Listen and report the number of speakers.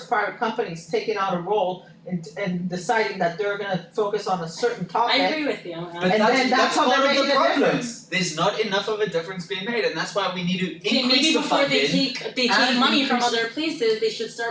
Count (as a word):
three